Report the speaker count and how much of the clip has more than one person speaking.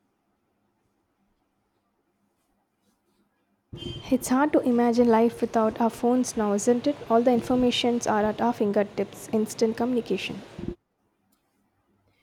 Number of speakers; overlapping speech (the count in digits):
1, no overlap